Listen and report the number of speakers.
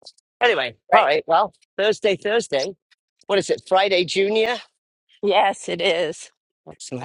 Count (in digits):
2